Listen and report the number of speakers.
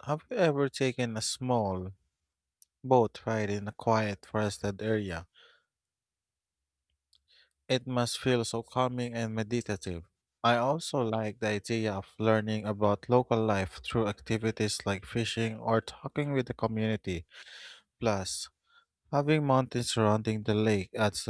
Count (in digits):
1